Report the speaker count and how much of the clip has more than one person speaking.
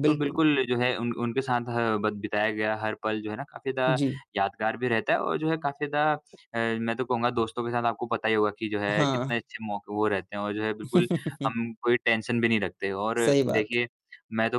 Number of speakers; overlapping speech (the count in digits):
2, about 9%